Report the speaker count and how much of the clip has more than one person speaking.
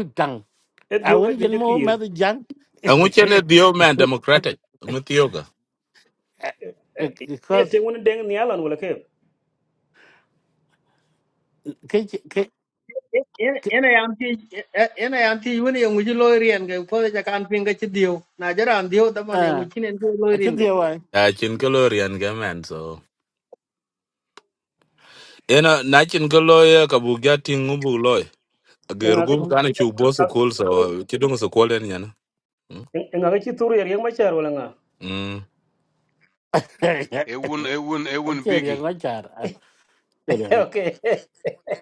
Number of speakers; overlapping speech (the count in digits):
5, about 10%